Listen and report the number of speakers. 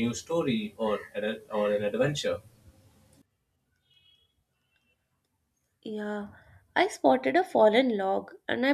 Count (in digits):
2